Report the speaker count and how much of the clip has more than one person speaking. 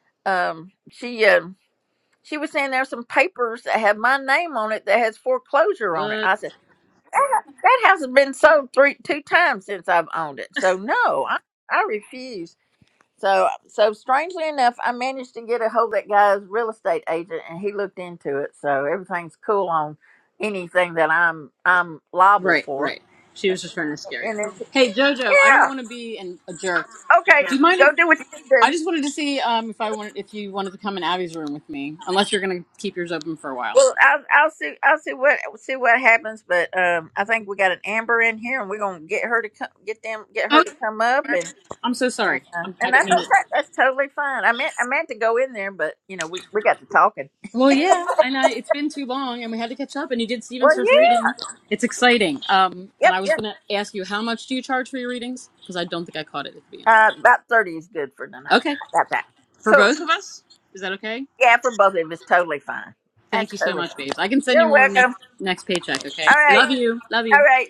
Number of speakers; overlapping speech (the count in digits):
2, about 10%